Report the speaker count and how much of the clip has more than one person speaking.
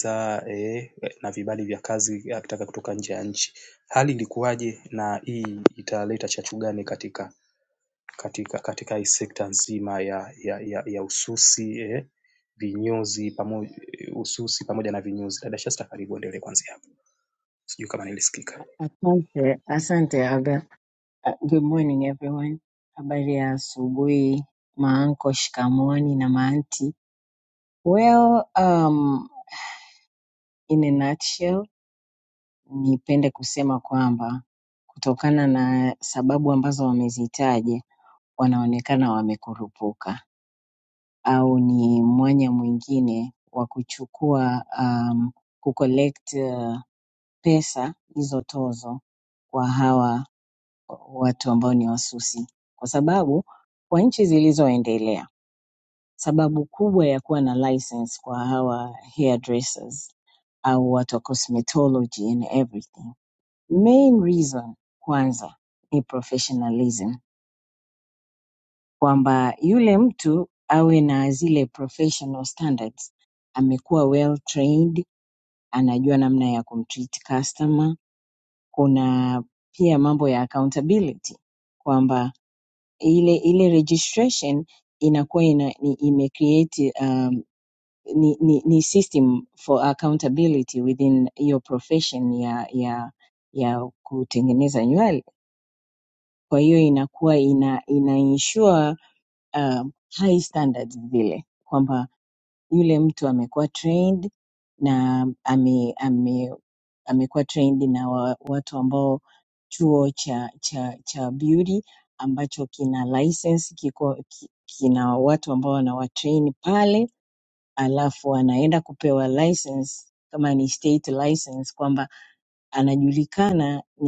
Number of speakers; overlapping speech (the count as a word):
two, no overlap